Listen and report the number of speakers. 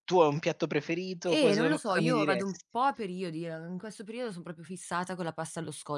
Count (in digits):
2